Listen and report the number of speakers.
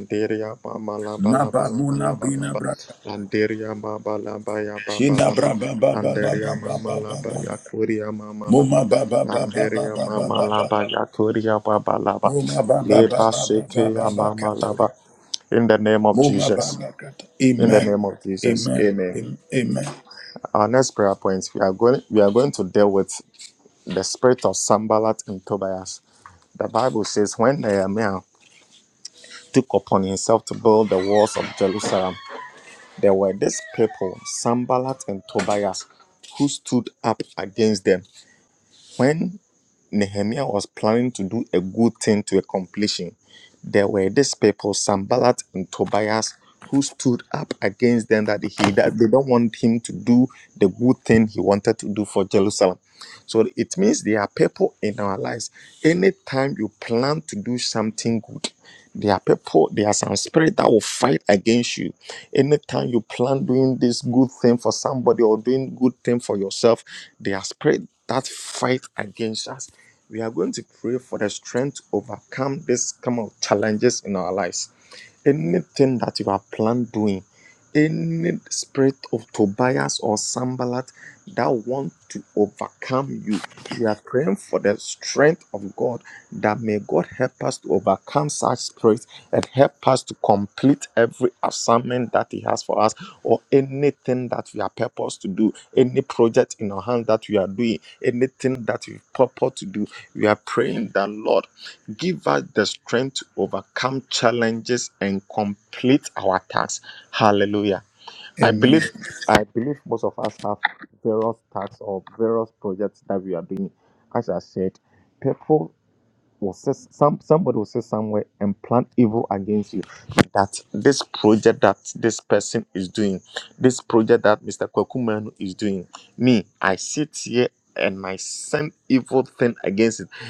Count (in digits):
2